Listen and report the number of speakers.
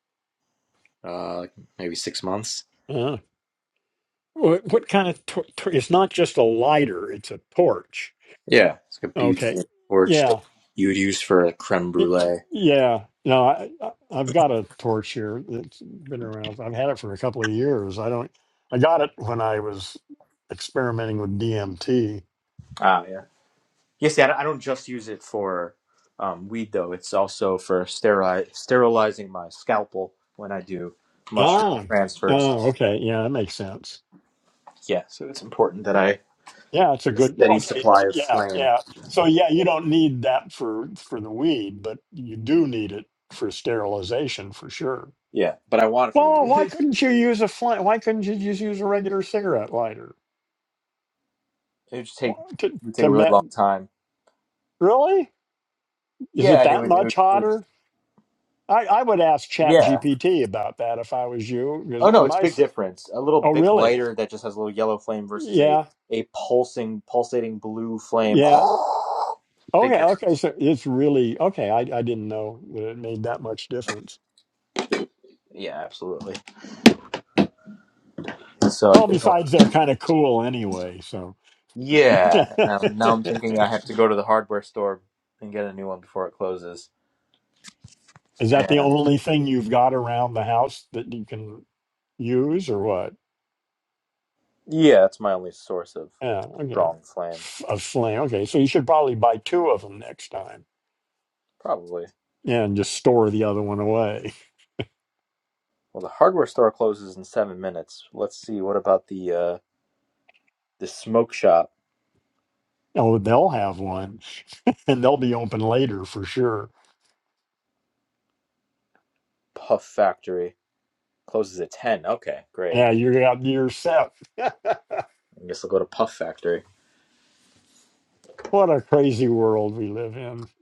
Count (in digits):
2